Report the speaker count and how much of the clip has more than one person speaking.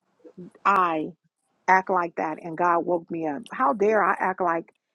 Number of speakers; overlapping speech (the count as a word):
one, no overlap